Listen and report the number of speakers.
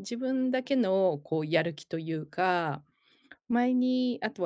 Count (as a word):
one